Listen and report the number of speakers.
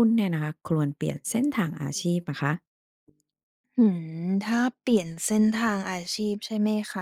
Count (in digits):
2